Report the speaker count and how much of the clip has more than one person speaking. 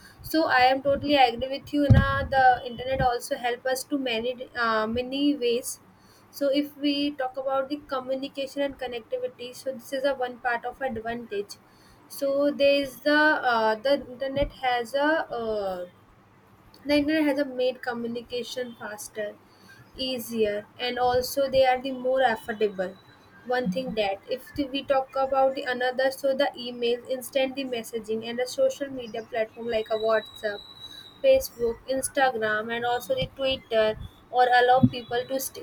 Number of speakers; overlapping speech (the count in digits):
1, no overlap